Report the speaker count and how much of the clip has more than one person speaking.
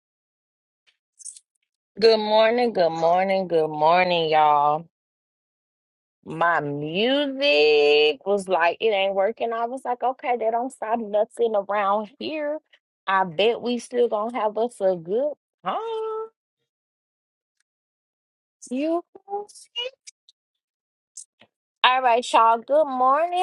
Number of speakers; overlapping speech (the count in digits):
1, no overlap